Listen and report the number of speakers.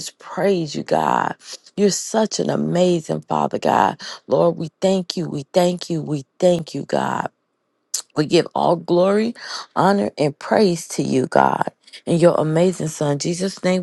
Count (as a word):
one